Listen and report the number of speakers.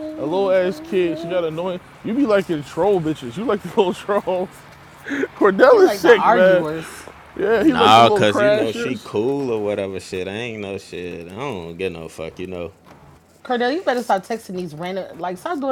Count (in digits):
3